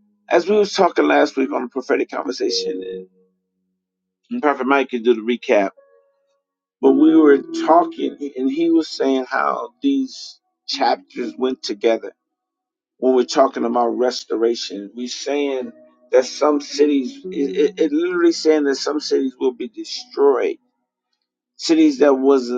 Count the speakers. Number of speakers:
one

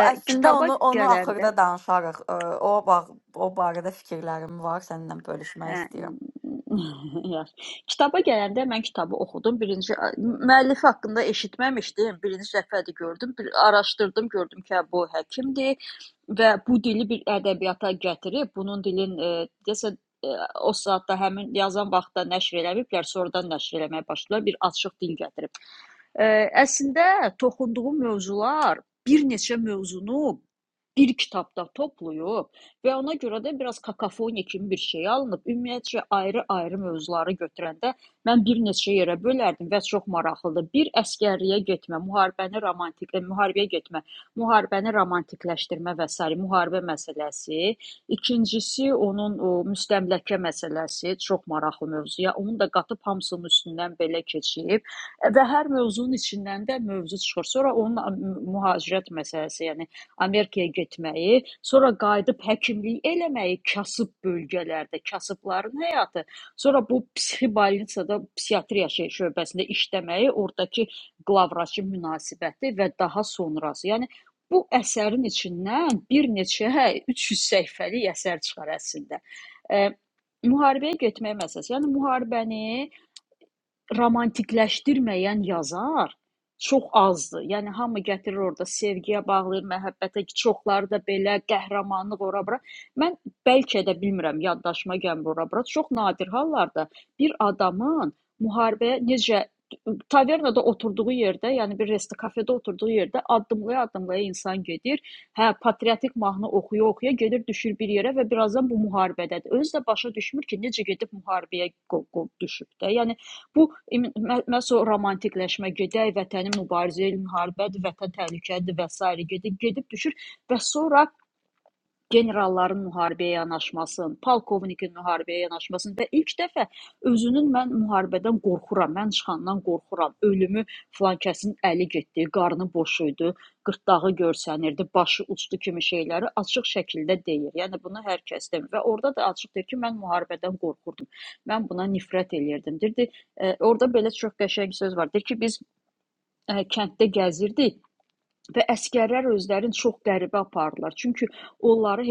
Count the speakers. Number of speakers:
two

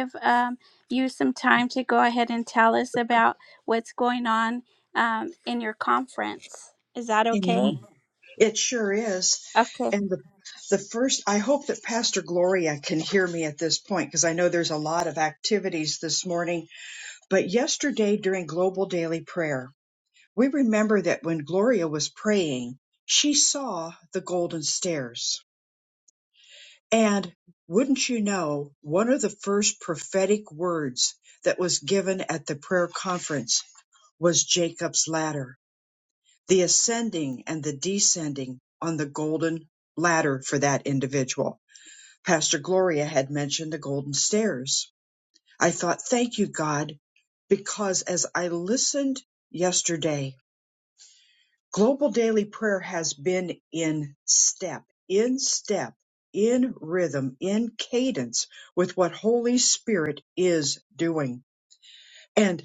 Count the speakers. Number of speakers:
two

